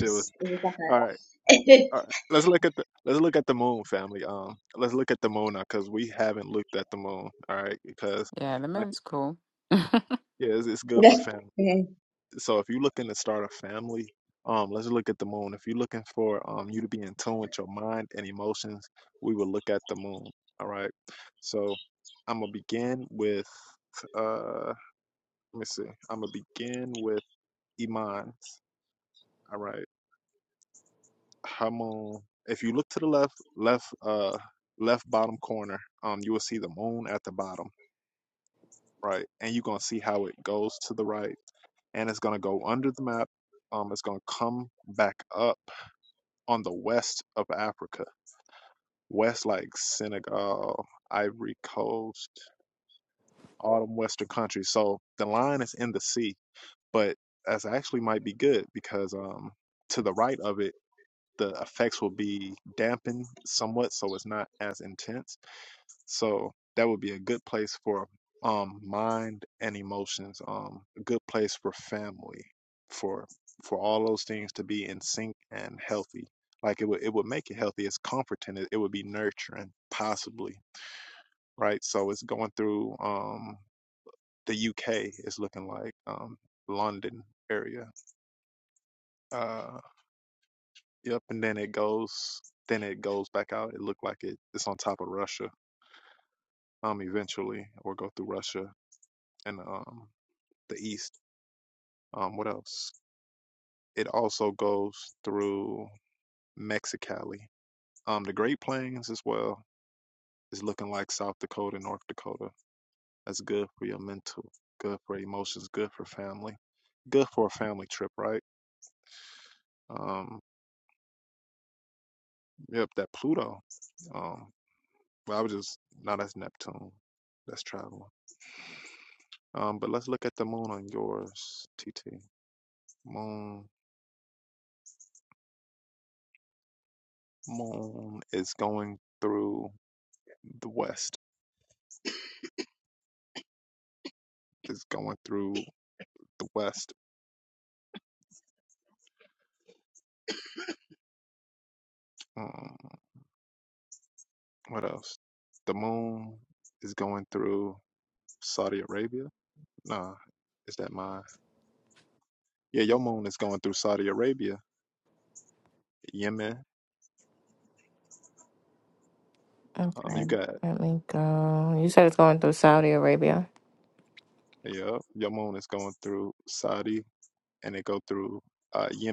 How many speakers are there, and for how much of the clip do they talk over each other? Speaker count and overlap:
4, about 1%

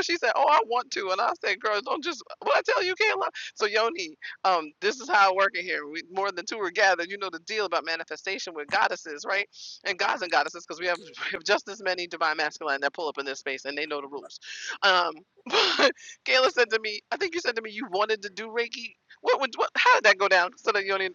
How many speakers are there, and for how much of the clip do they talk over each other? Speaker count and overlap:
1, no overlap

